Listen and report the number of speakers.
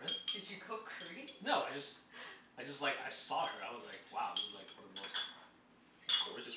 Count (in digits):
2